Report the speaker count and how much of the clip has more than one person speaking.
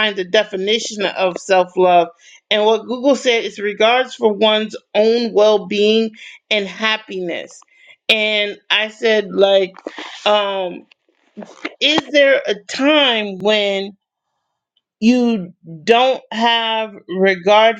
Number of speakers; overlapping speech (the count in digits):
1, no overlap